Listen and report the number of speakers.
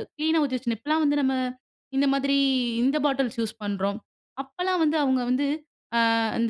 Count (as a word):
one